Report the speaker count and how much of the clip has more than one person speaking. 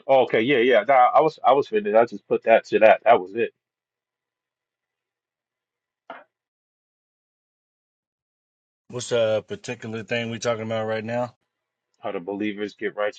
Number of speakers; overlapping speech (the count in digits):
2, no overlap